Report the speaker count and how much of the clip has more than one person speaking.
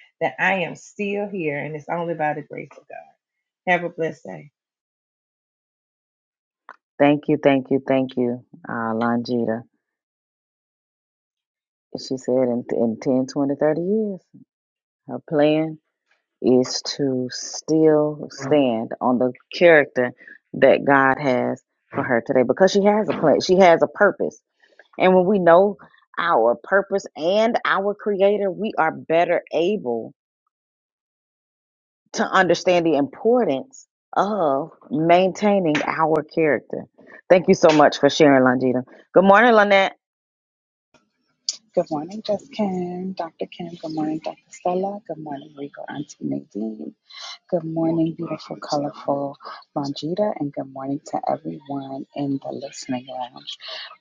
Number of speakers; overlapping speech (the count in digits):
3, no overlap